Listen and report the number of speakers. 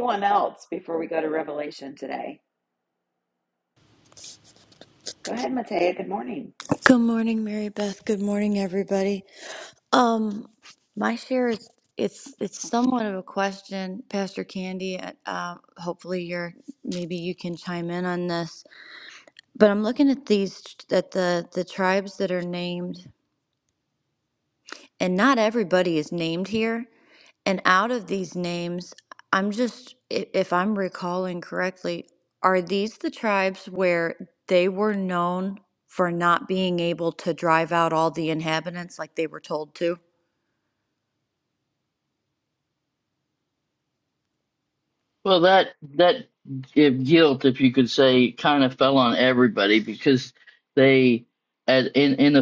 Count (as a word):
three